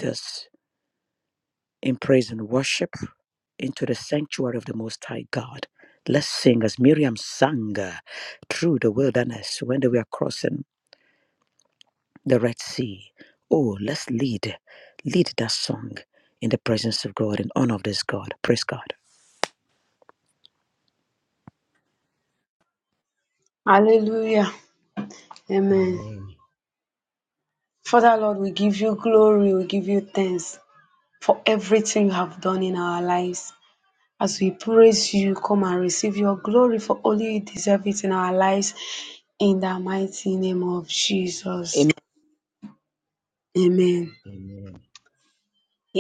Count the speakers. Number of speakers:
three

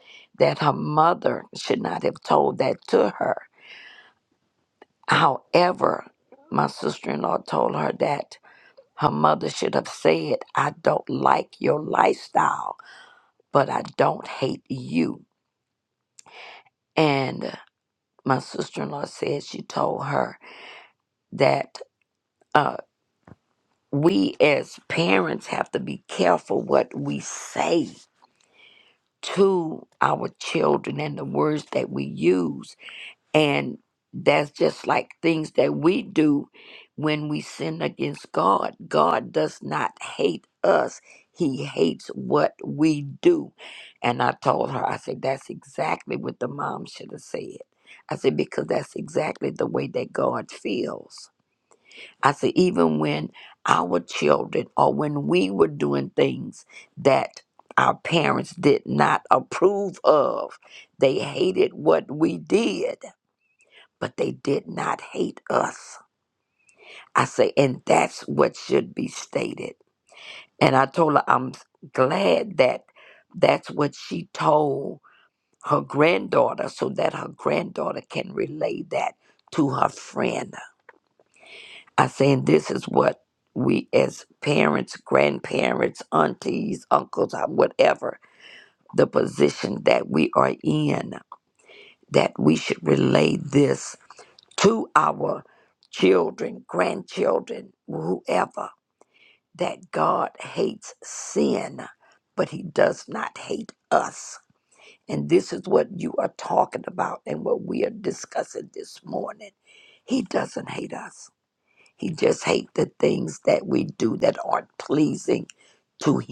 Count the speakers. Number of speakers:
one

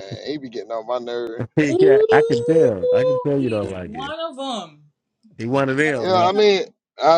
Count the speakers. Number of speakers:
three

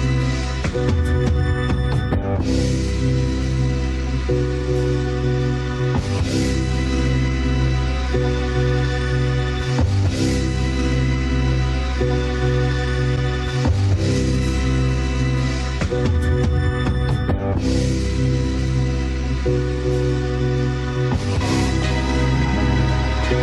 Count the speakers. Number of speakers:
zero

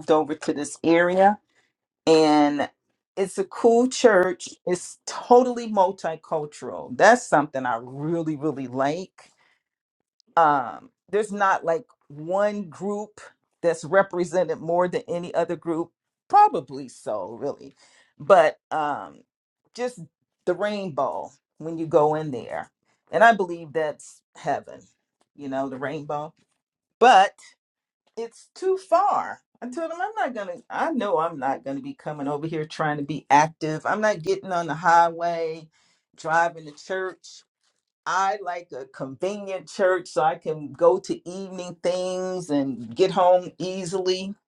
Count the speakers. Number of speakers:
one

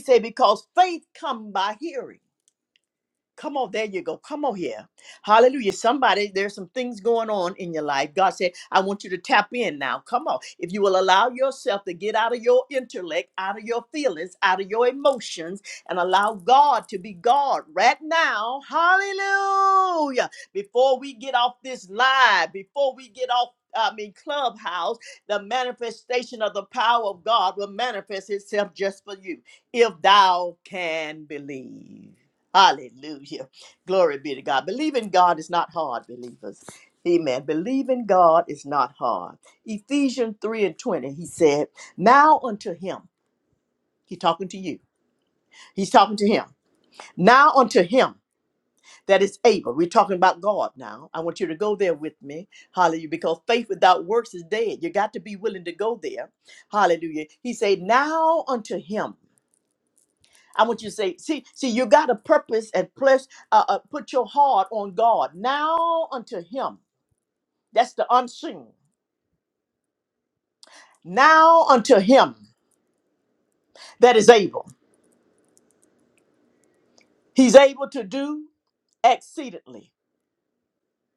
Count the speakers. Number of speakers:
one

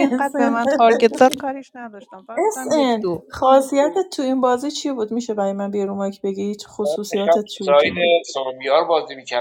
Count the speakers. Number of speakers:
three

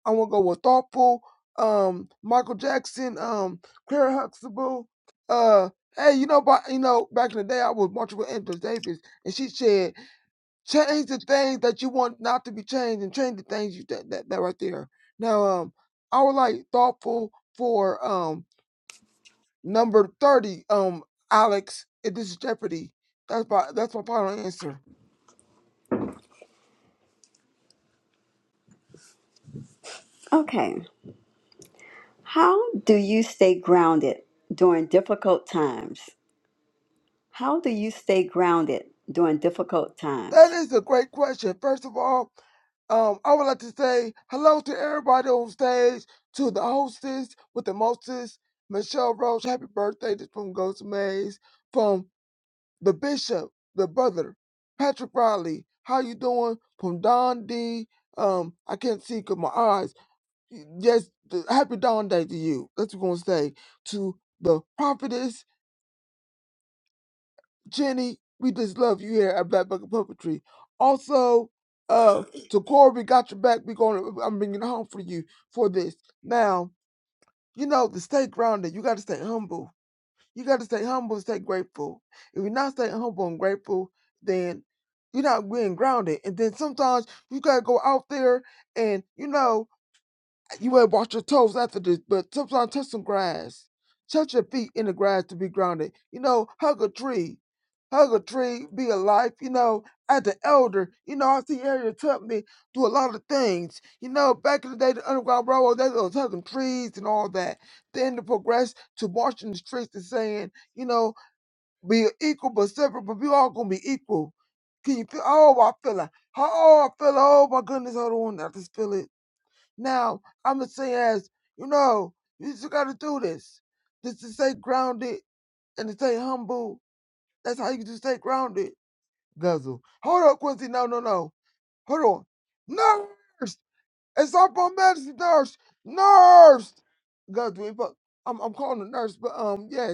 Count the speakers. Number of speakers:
two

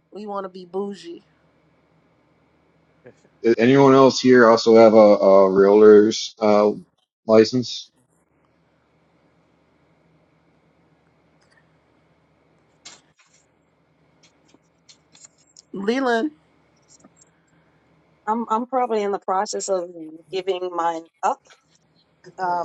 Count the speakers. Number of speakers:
three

